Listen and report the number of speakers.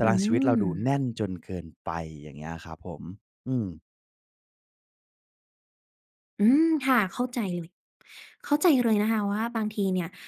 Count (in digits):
2